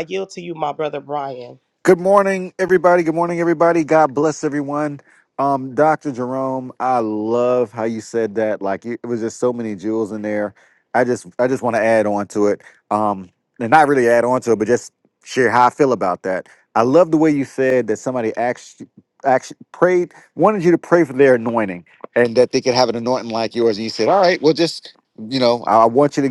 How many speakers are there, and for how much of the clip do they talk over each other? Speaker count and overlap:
2, no overlap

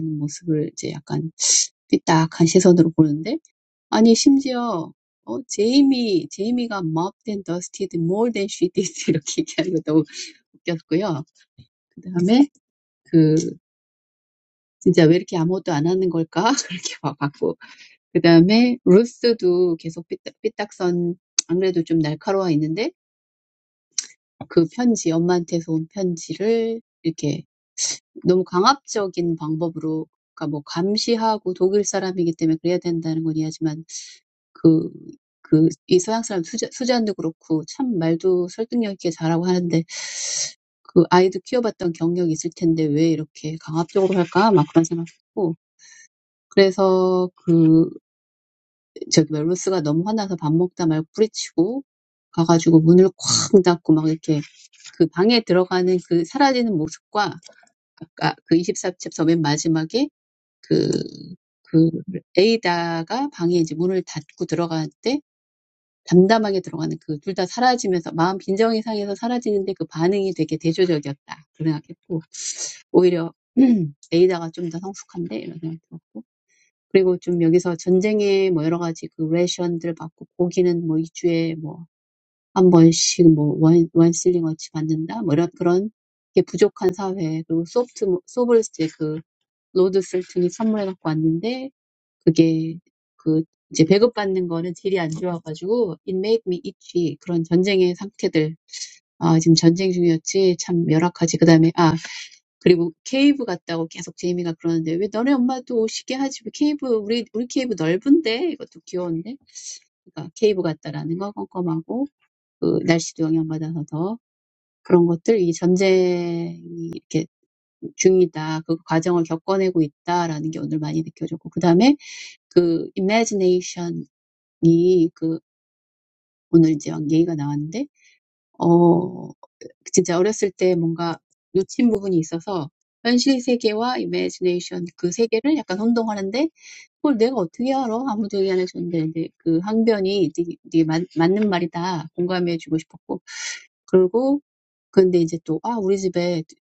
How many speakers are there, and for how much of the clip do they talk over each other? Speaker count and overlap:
1, no overlap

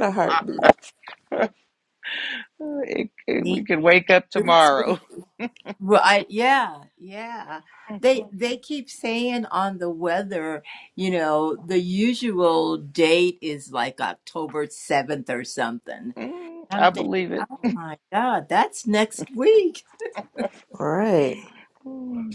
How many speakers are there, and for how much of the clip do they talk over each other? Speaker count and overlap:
3, about 6%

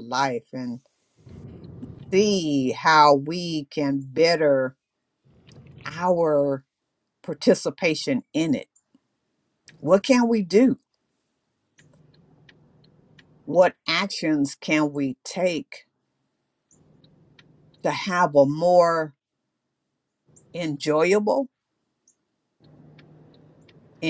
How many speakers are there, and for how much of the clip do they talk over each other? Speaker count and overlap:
1, no overlap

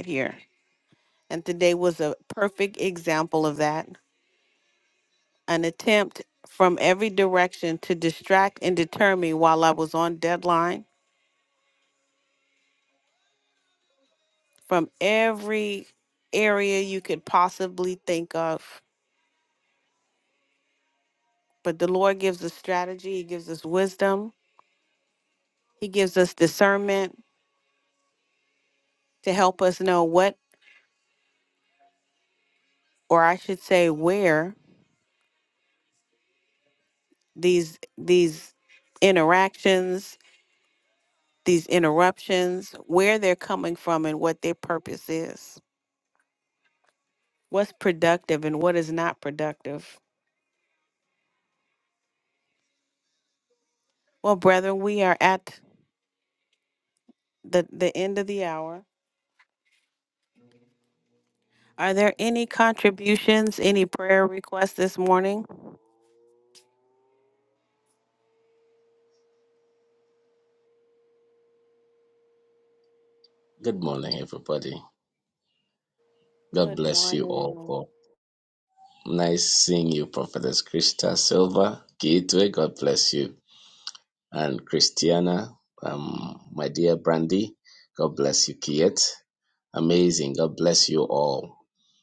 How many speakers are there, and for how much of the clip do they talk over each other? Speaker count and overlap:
2, about 1%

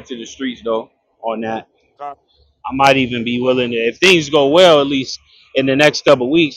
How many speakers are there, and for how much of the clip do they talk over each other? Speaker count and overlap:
1, no overlap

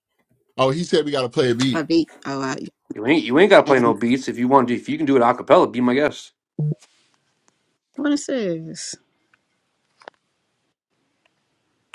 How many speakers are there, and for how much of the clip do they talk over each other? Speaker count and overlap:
3, about 4%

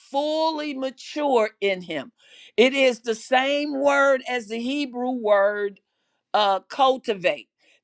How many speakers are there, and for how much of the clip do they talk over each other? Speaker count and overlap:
1, no overlap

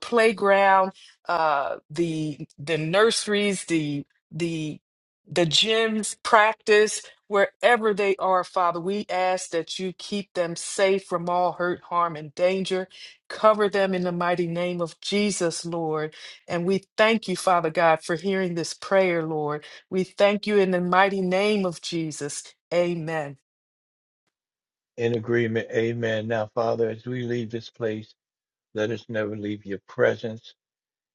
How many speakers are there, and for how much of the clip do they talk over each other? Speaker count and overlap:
2, no overlap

